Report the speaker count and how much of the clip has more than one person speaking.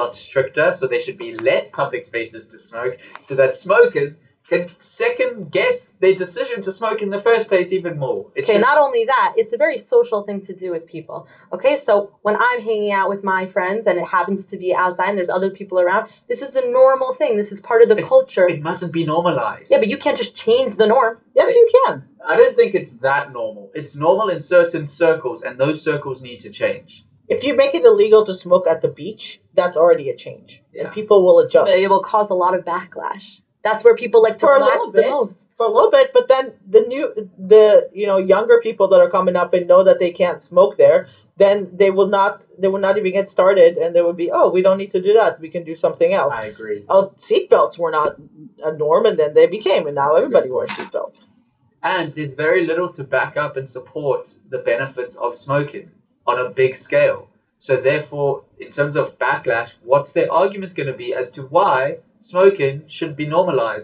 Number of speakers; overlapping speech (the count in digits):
3, about 4%